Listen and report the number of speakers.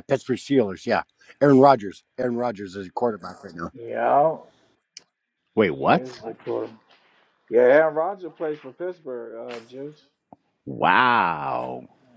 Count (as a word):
three